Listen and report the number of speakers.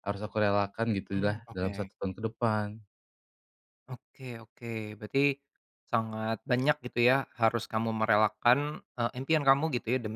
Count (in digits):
2